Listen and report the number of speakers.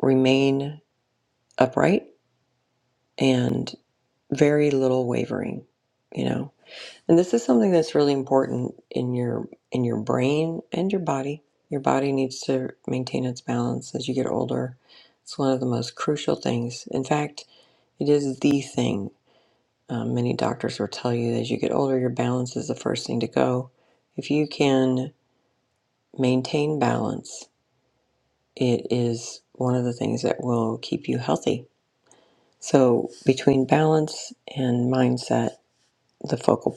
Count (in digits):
1